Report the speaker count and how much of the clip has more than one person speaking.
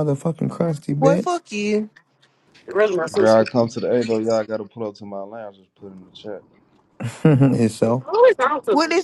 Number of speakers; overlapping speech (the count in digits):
4, about 12%